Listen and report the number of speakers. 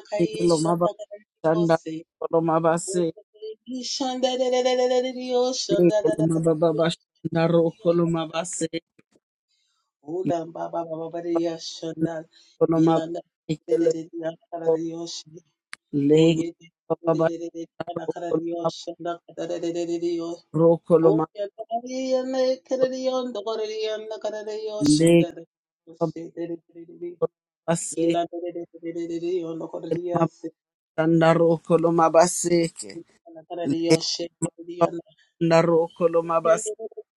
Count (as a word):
two